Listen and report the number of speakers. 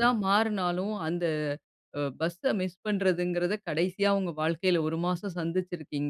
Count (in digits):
1